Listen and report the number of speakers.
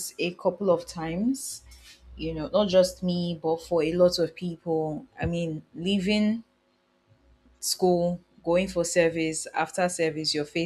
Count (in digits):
1